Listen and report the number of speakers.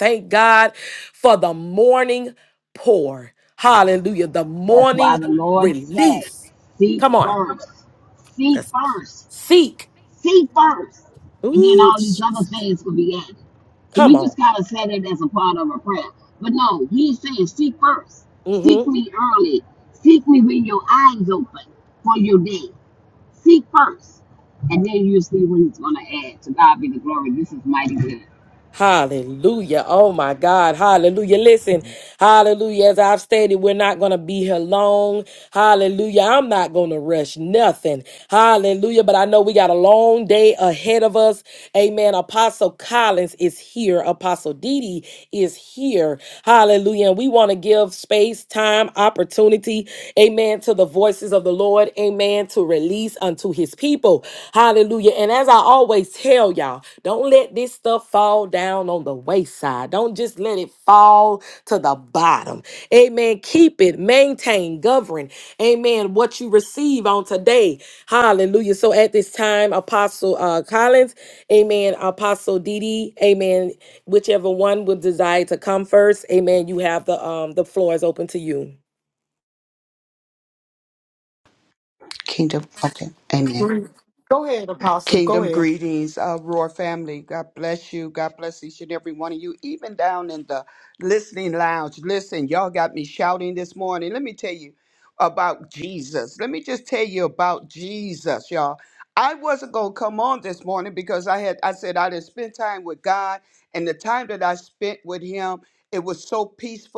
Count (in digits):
4